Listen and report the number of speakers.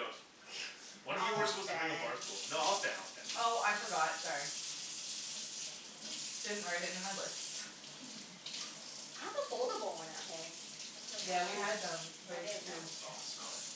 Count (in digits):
3